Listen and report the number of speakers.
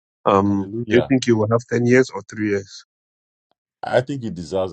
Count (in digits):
2